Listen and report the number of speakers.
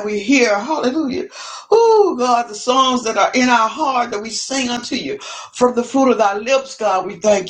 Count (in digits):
1